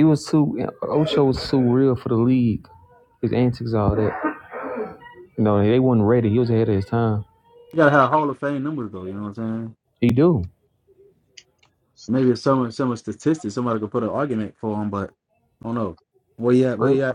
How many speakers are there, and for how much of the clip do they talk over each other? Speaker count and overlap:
2, about 1%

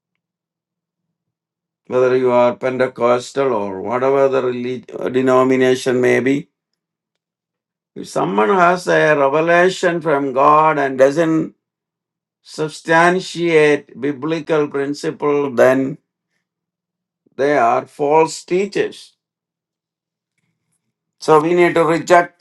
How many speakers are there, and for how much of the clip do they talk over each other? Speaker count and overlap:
1, no overlap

